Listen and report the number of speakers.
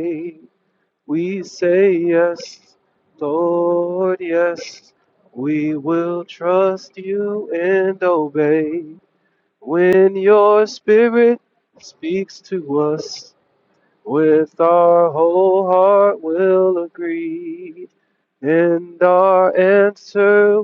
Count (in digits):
1